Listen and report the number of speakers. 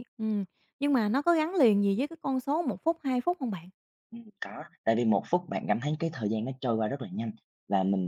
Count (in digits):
2